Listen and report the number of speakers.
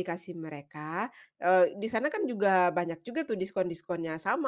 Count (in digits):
1